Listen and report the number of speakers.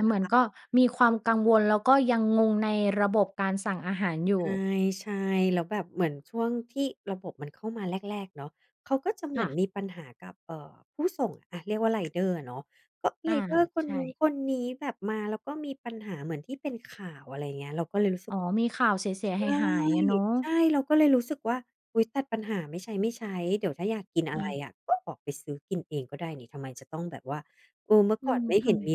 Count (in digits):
2